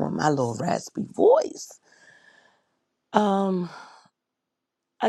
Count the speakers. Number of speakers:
1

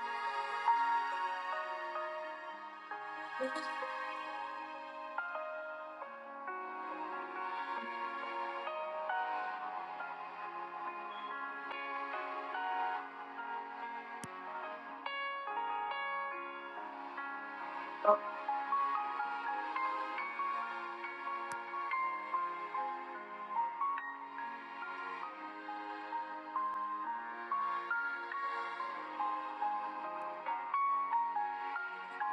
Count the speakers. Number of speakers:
0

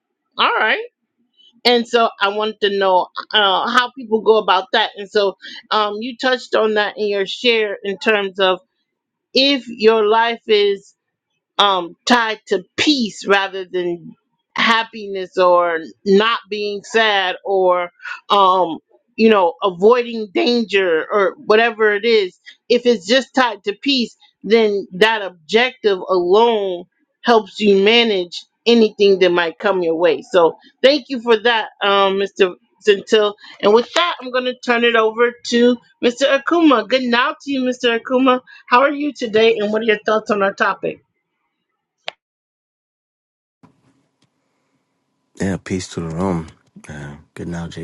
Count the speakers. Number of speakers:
2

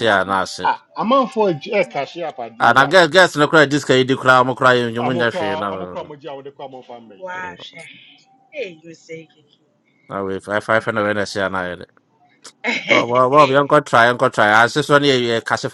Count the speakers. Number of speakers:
3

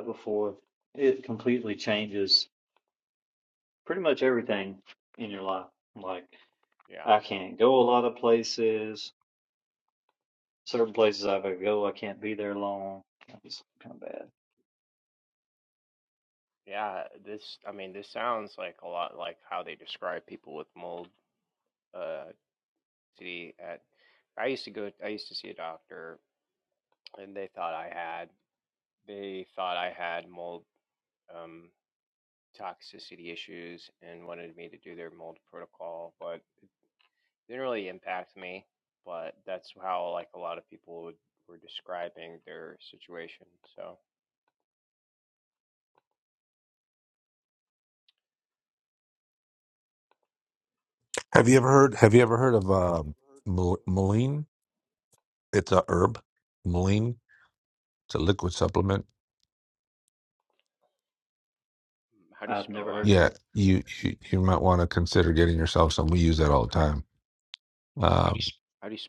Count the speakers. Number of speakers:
3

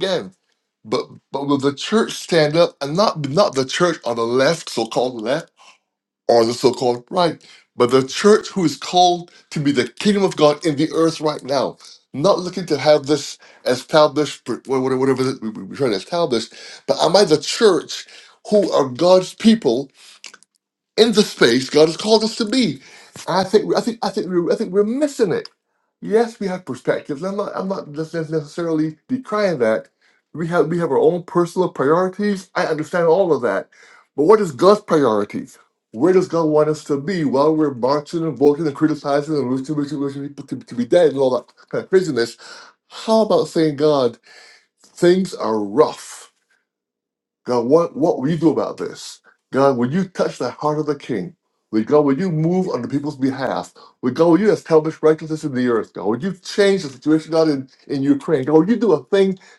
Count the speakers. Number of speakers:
1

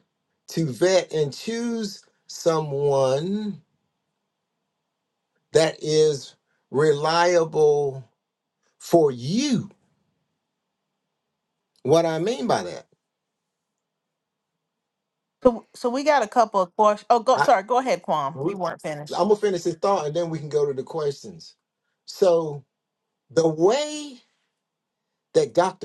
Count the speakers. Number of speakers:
2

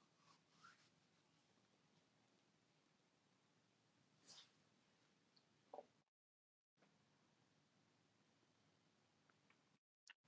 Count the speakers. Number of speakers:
0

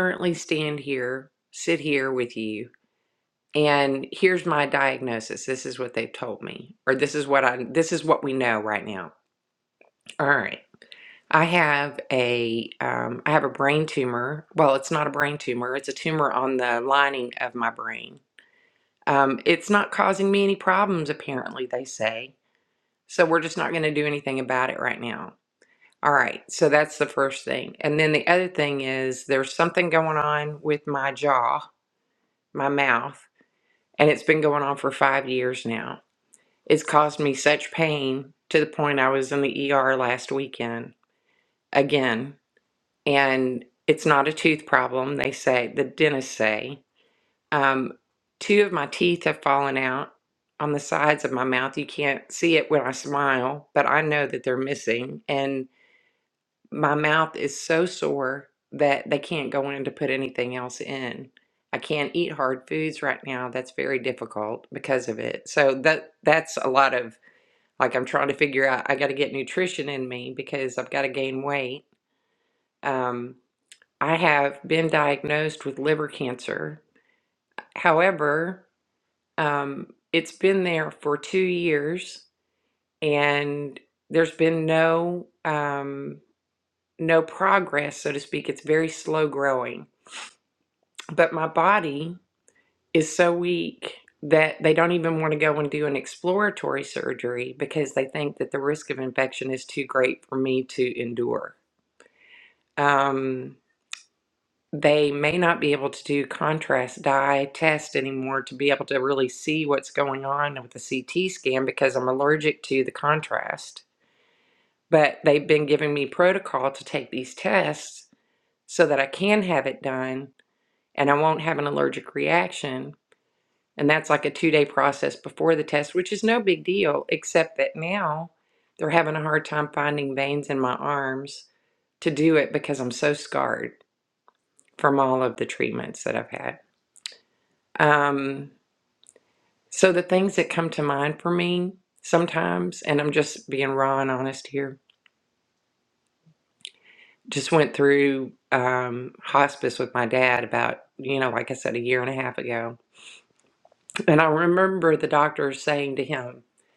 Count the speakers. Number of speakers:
1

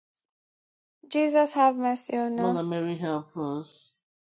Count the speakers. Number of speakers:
2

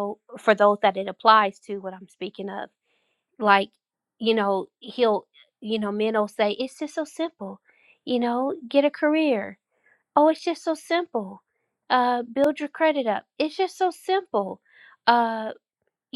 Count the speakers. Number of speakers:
1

